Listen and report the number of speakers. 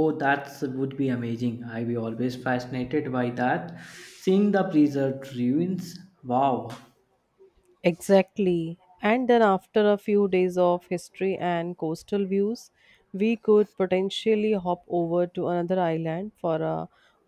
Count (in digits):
2